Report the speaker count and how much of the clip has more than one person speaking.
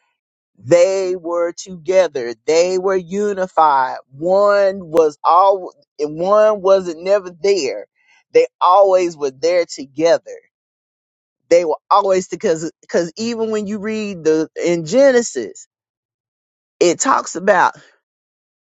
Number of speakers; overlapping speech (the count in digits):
1, no overlap